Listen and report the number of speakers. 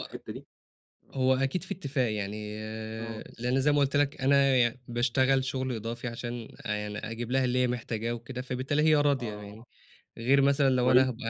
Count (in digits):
2